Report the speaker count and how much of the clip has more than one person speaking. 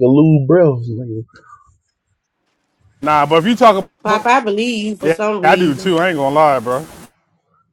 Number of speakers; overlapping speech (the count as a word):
three, about 15%